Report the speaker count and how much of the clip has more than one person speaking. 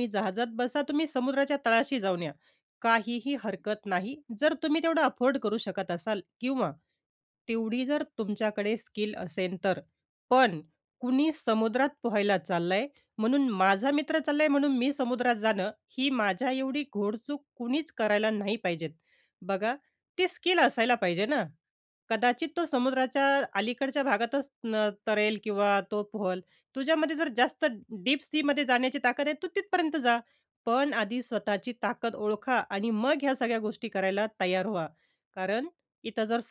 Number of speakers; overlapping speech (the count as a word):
one, no overlap